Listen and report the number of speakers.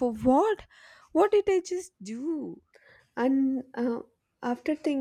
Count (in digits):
2